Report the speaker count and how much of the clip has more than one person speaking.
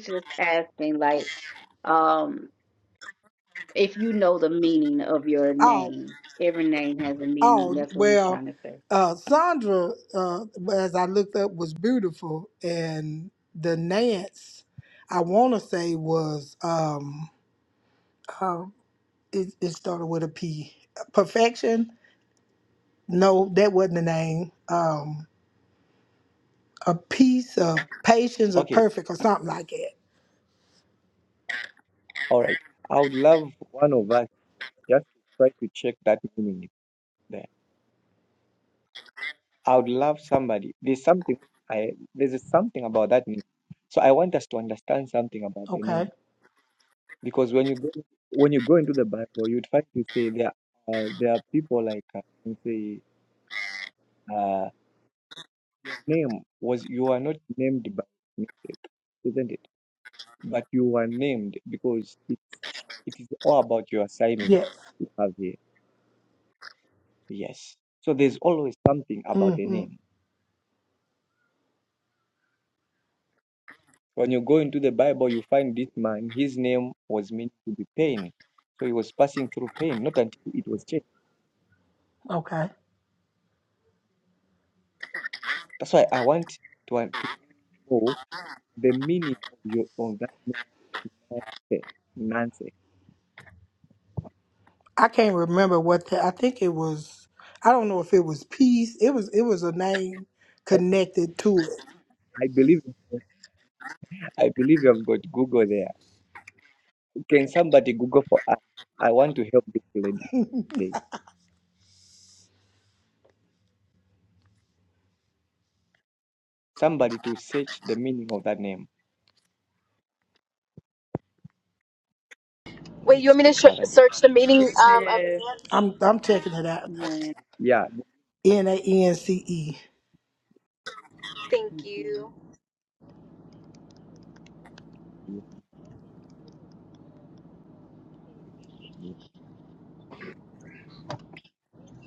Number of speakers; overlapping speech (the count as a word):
four, about 2%